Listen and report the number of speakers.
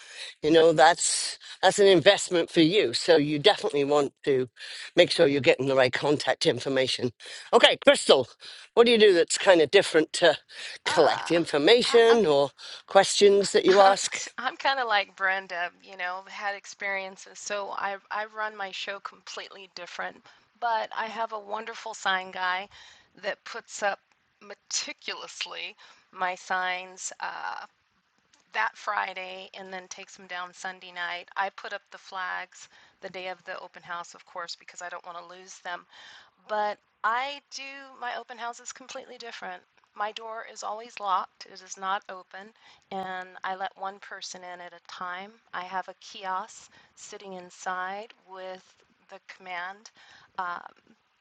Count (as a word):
two